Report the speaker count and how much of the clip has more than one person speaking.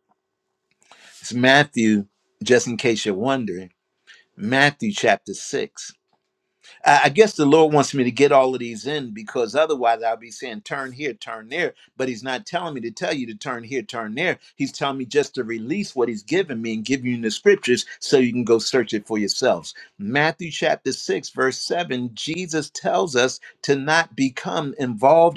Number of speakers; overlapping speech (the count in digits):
1, no overlap